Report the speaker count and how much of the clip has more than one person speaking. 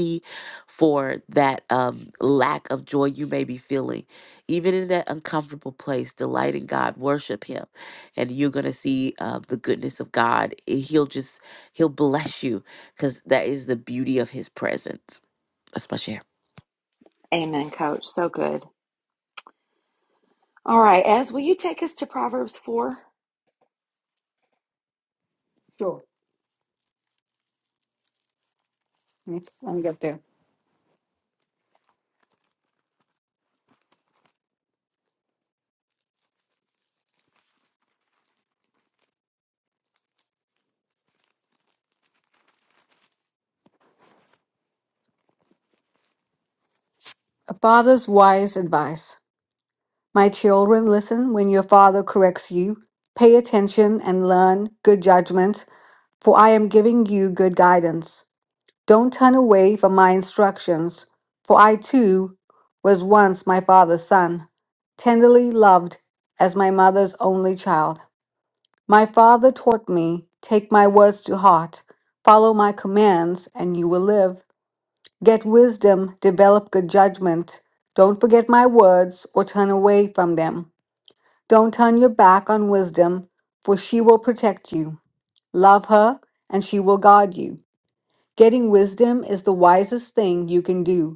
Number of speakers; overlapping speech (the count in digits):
3, no overlap